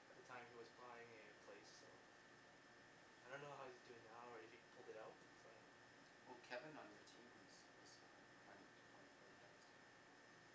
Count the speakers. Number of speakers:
2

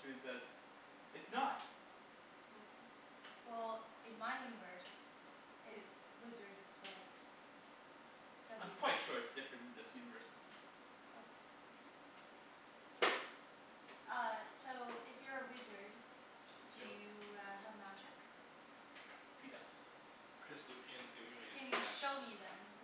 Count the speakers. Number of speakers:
3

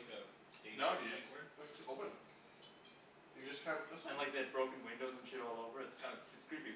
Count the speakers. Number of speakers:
3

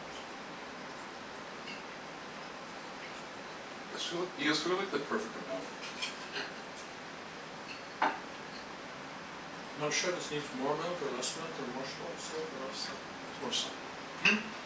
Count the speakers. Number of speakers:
2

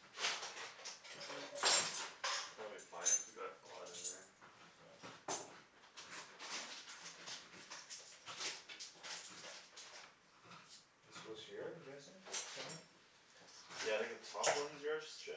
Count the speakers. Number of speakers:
2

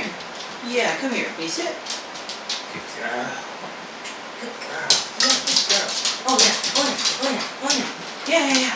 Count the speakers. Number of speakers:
1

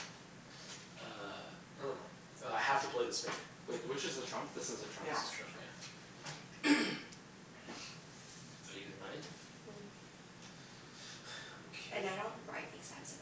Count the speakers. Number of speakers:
3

